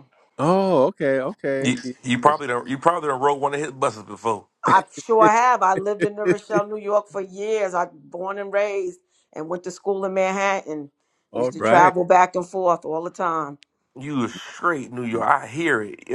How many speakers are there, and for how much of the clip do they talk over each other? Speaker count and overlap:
3, about 5%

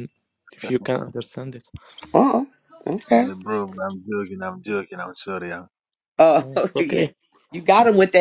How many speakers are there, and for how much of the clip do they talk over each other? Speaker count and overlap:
3, about 6%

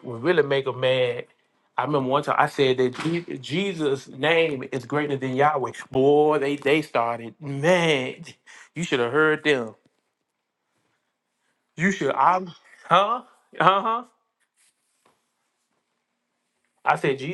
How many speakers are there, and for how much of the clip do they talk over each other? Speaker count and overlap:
1, no overlap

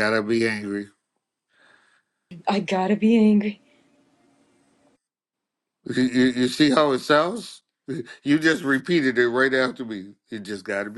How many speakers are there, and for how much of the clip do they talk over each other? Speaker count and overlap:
2, no overlap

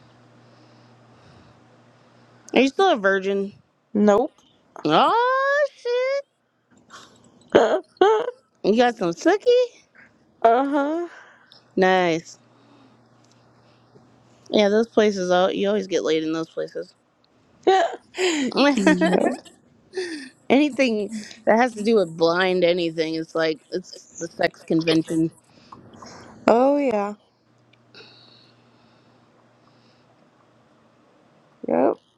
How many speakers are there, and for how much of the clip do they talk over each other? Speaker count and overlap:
2, no overlap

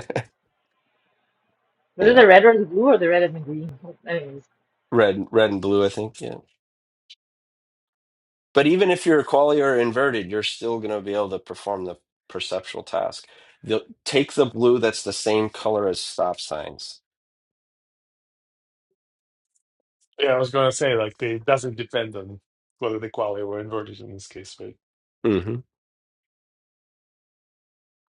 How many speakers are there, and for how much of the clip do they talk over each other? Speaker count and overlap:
3, about 1%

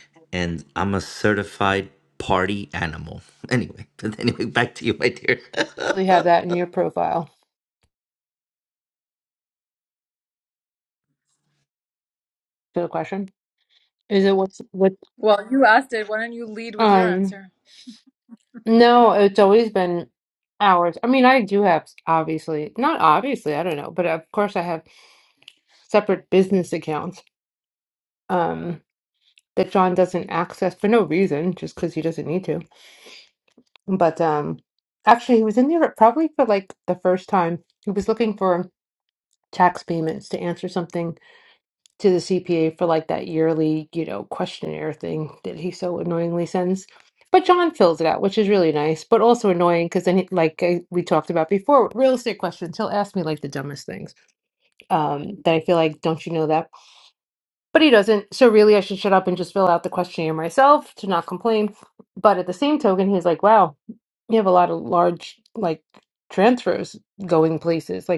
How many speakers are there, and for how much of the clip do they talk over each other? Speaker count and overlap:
3, about 1%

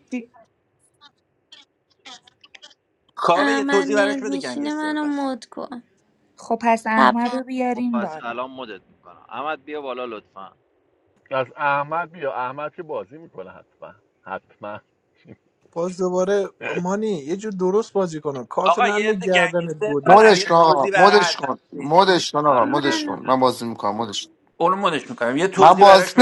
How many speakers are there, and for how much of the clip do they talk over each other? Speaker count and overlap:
7, about 28%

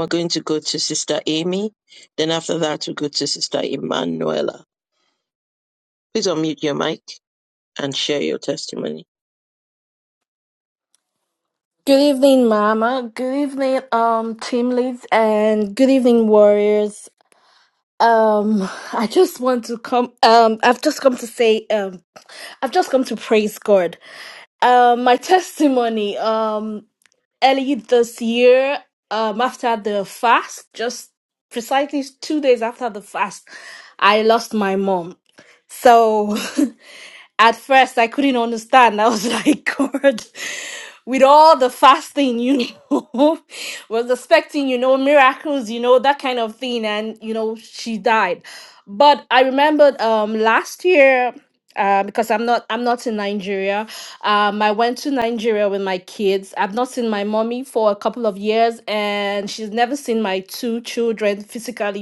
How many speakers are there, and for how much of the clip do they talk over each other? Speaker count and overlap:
2, no overlap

